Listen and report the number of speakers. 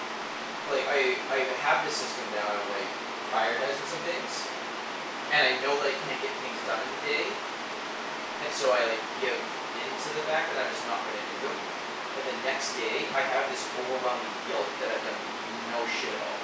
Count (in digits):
1